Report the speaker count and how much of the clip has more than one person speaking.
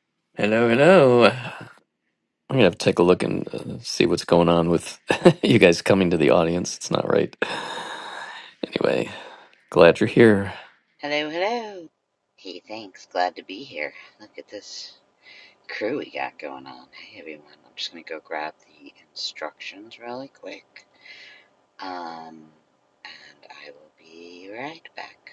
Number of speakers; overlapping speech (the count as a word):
two, no overlap